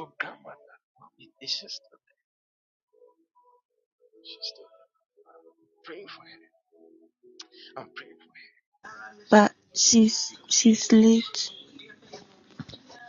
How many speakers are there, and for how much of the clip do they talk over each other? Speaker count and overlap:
2, about 1%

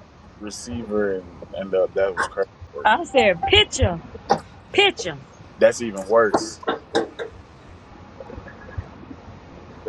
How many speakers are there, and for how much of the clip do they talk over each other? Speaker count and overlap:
2, under 1%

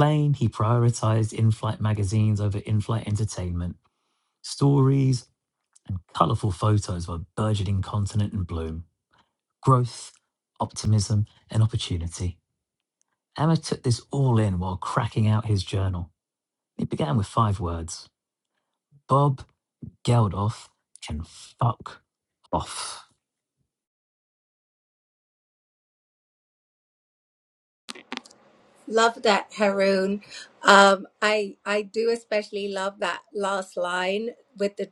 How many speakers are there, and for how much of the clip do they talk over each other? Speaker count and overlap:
2, no overlap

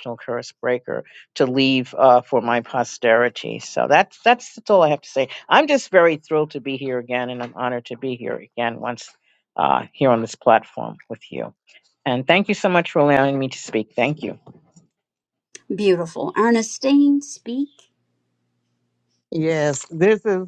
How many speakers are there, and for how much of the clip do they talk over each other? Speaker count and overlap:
3, no overlap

